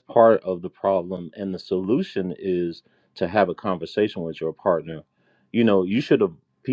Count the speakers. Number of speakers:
1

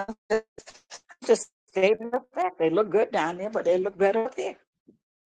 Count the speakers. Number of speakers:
1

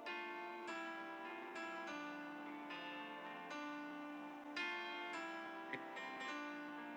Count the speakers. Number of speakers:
0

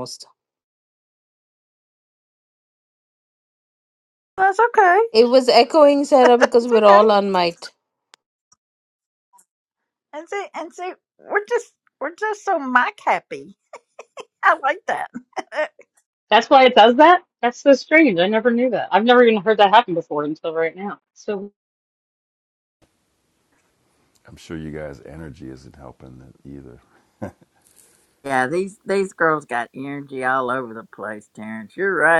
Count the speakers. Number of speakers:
4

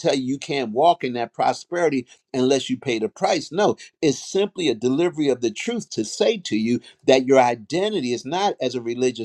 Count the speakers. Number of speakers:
1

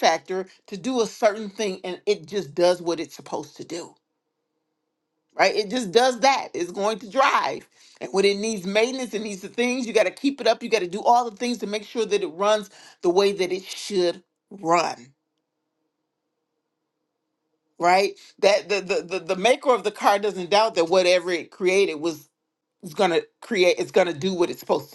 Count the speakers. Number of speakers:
1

